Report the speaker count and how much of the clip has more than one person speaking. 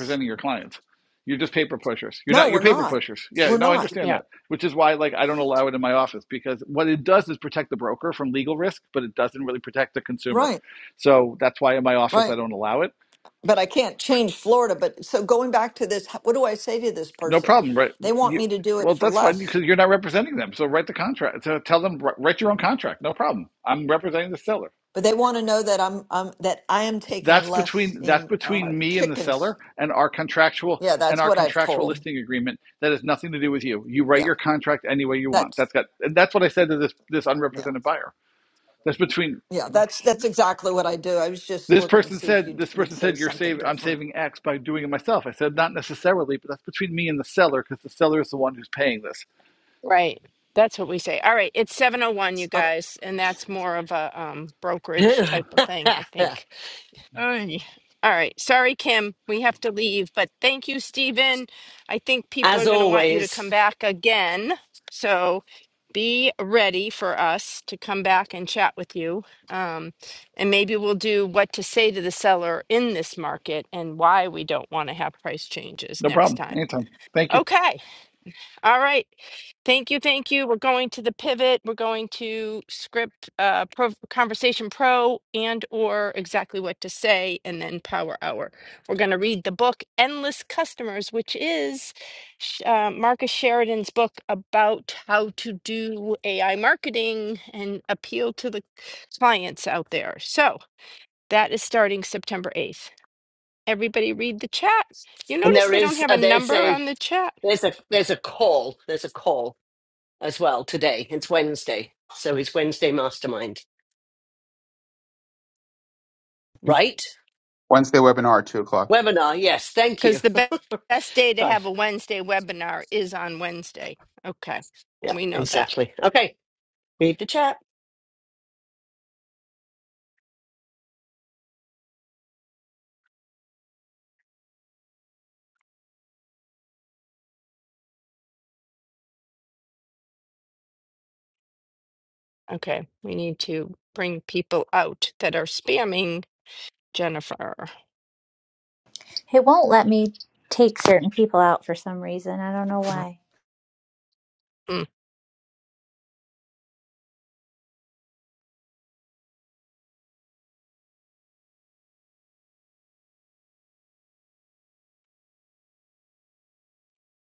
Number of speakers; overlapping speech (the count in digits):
6, about 8%